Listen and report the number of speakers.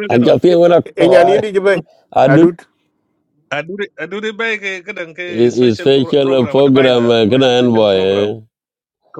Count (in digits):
3